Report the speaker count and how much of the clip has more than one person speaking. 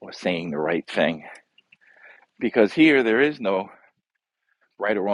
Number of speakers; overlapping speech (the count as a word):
one, no overlap